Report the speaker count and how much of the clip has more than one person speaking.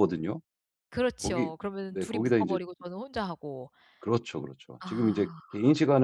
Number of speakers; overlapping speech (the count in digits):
2, about 26%